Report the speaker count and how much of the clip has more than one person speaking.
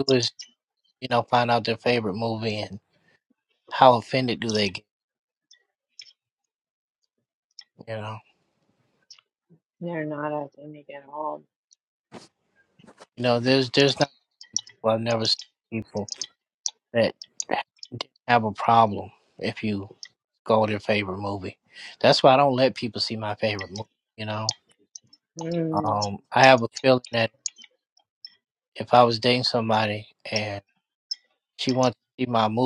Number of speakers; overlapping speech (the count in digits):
2, no overlap